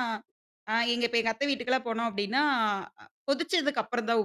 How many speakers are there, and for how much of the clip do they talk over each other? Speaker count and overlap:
1, no overlap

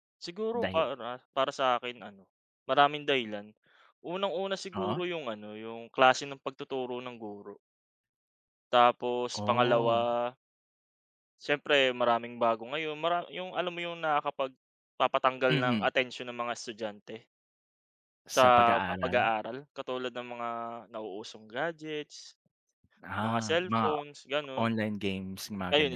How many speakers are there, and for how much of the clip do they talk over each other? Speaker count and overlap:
2, about 14%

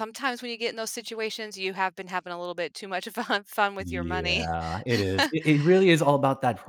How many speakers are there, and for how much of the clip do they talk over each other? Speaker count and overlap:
2, about 10%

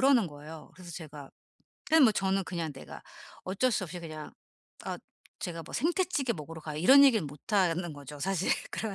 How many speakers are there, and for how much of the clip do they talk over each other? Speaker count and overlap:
1, no overlap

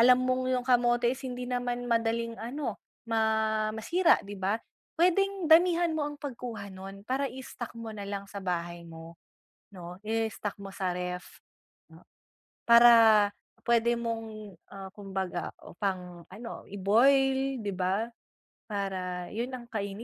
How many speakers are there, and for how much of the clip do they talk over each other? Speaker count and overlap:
1, no overlap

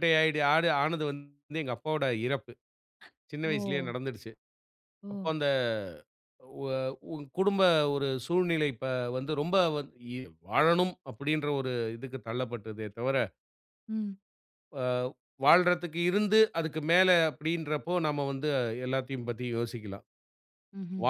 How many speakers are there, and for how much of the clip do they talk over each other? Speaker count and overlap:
2, about 3%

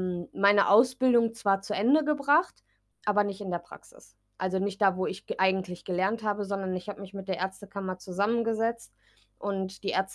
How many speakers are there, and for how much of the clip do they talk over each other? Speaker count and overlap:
1, no overlap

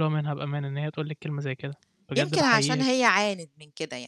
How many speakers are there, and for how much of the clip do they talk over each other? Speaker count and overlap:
2, about 17%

